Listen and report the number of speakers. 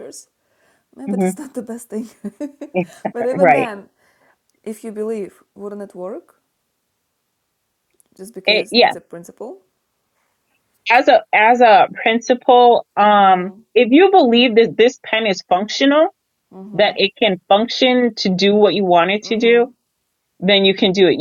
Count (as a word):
two